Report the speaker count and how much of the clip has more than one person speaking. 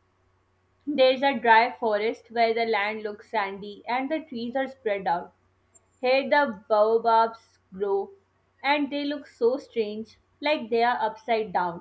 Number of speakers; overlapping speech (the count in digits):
1, no overlap